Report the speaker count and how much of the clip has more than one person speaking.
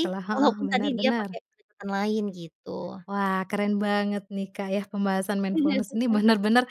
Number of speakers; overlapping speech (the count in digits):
2, about 30%